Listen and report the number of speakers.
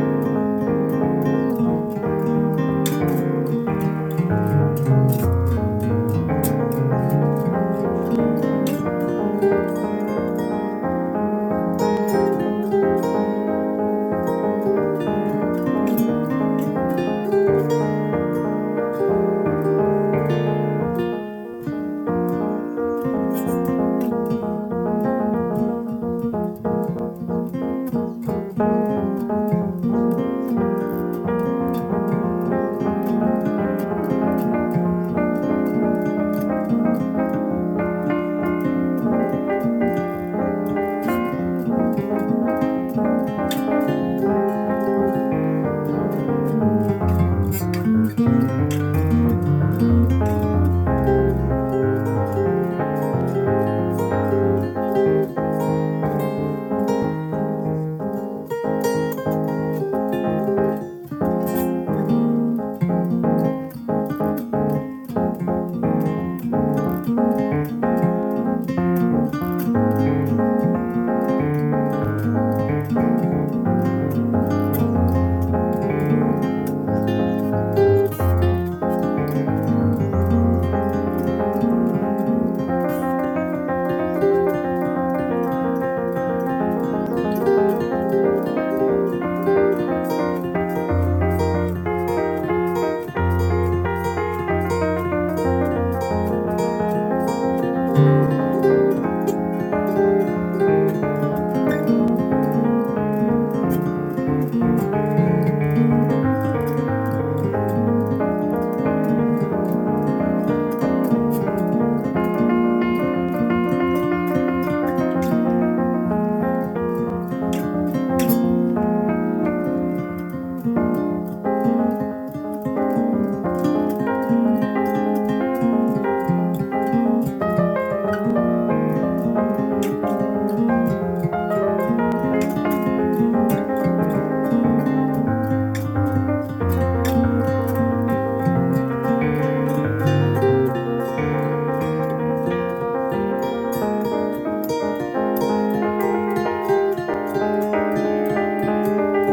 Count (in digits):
0